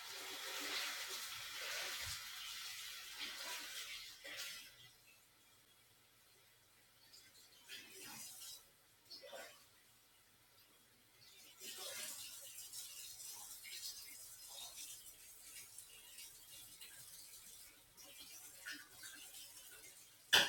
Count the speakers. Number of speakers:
zero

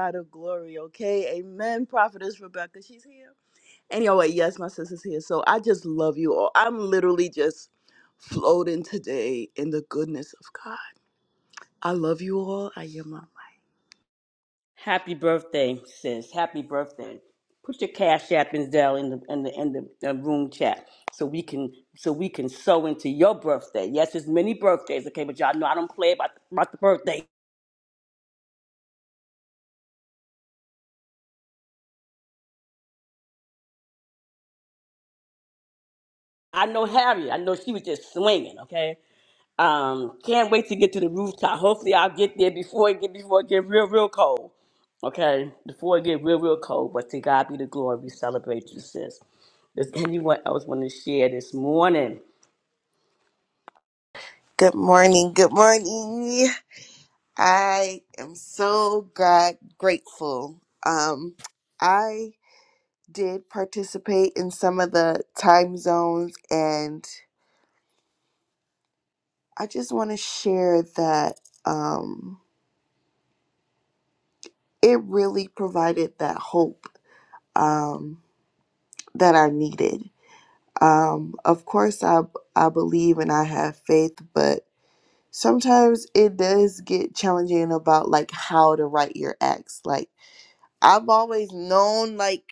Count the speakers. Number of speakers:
three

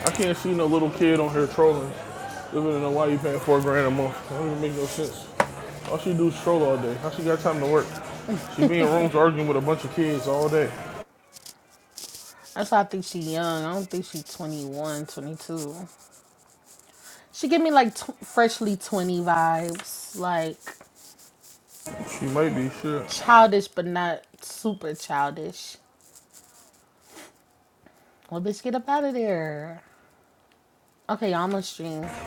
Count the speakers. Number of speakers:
two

